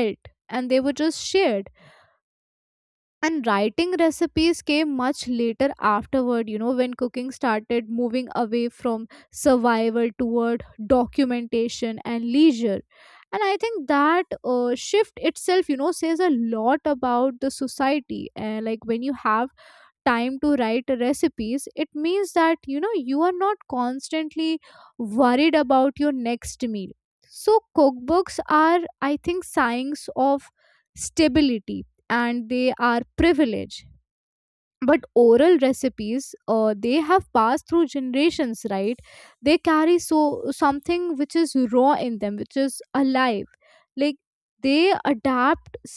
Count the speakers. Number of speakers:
1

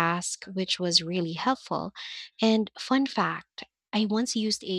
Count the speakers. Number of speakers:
1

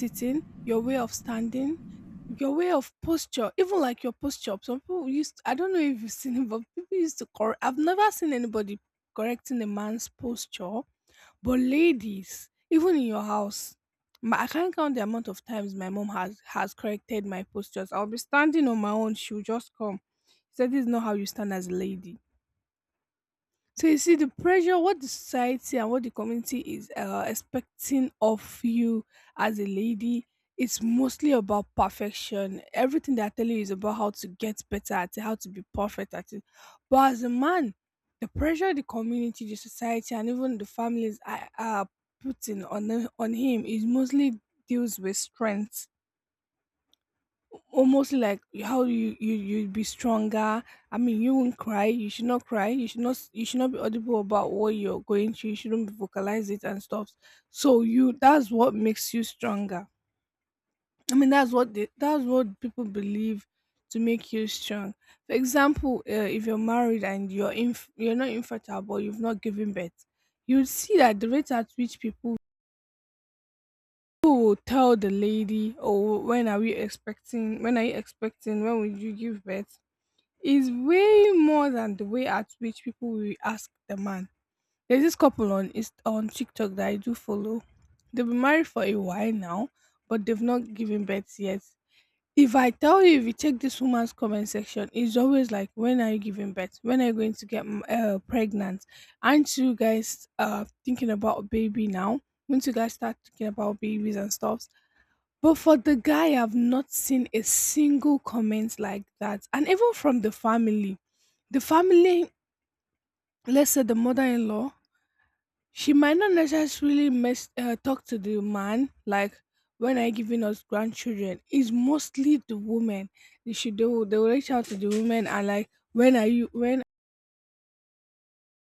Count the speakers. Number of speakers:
1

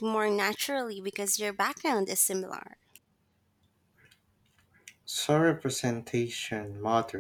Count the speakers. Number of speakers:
2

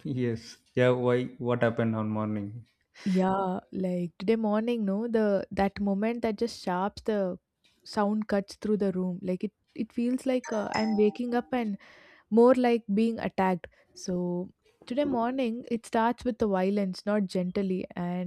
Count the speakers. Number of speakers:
2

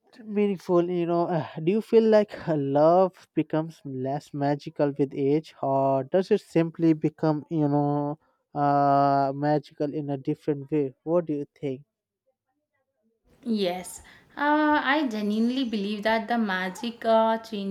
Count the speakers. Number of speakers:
2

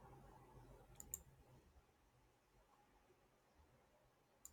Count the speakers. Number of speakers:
0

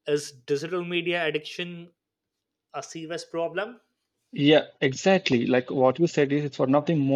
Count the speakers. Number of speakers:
2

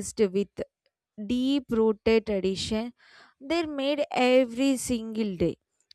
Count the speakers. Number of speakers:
1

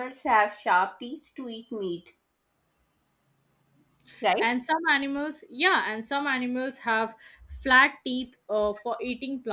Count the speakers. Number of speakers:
2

